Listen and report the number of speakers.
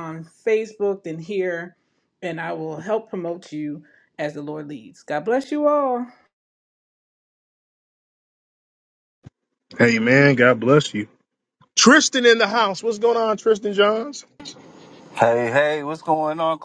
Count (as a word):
three